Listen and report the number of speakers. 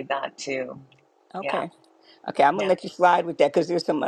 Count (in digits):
2